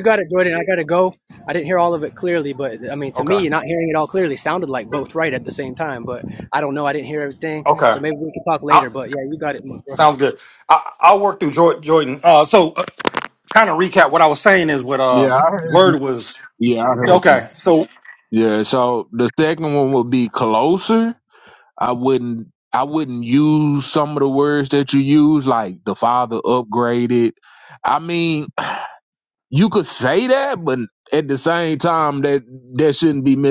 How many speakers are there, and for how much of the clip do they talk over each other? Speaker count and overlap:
3, about 5%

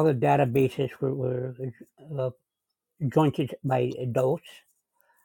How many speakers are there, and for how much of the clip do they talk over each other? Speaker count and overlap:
1, no overlap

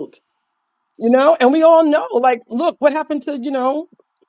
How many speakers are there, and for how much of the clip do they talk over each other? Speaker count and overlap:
1, no overlap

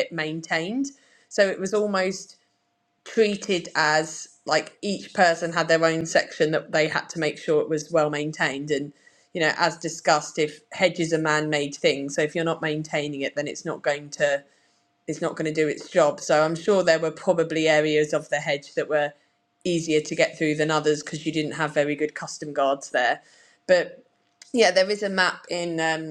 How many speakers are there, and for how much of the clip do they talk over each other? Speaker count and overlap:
1, no overlap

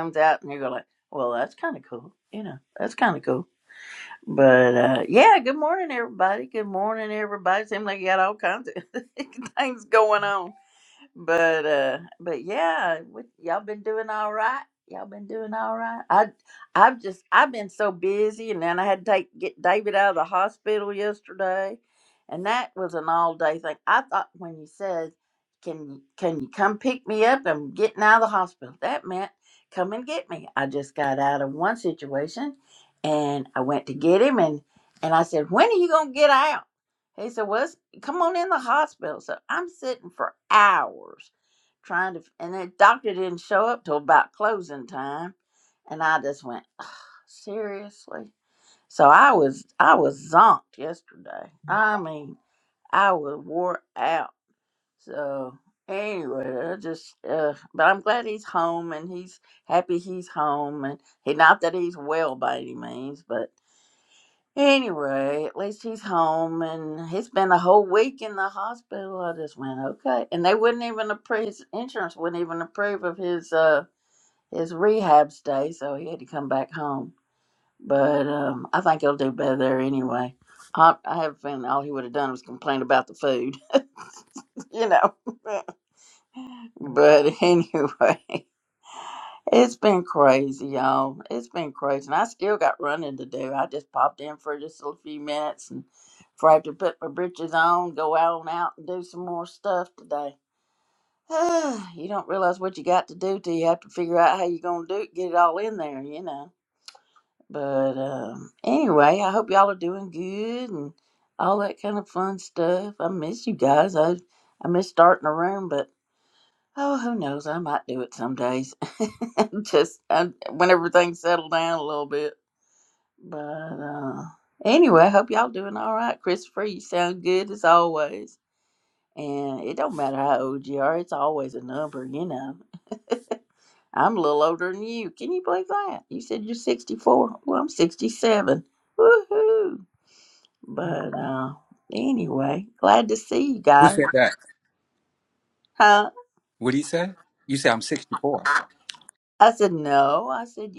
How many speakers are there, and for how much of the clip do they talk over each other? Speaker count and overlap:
2, under 1%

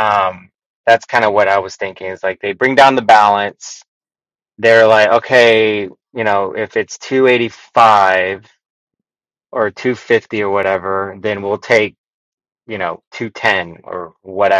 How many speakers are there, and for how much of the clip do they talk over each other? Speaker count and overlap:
1, no overlap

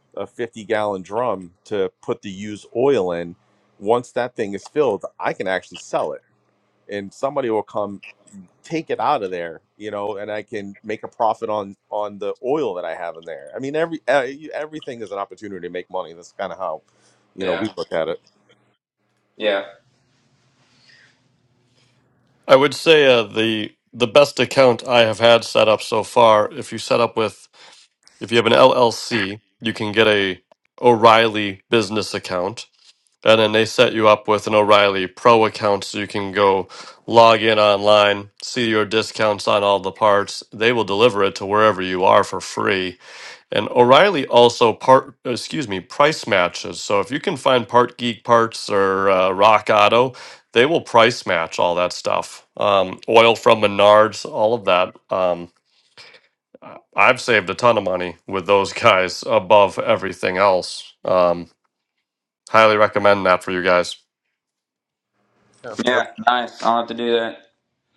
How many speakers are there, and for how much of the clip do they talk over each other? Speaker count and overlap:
3, about 1%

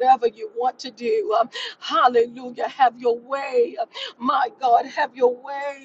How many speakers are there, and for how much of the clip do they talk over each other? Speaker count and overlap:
1, no overlap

